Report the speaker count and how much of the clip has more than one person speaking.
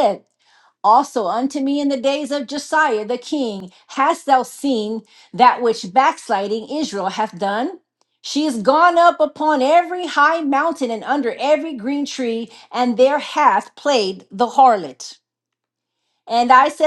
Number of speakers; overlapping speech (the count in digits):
1, no overlap